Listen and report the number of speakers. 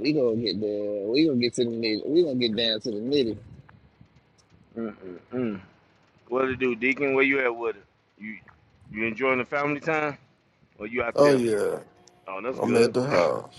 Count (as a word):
three